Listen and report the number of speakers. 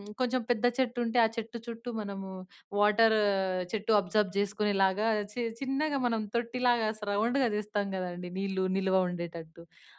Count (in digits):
1